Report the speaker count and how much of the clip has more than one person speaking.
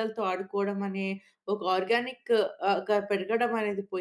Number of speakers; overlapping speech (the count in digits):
1, no overlap